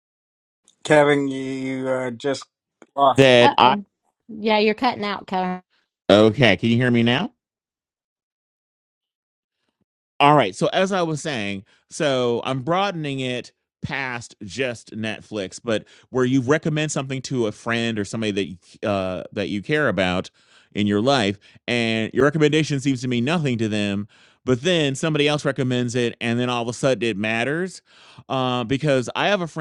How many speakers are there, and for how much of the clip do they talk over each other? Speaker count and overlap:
three, about 1%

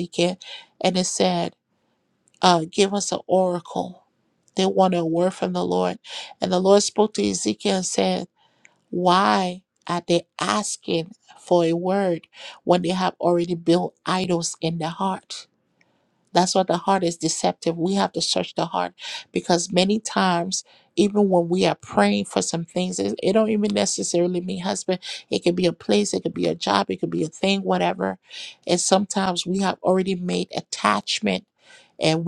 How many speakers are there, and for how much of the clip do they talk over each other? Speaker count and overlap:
one, no overlap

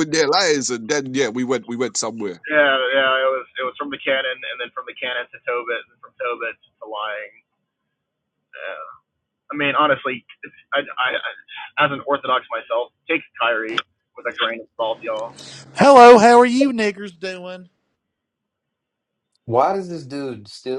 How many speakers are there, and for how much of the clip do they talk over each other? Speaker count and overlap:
four, no overlap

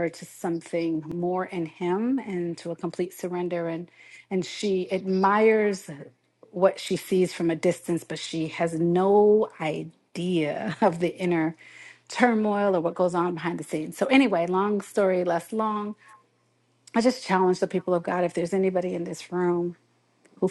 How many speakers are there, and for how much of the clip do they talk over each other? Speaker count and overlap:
one, no overlap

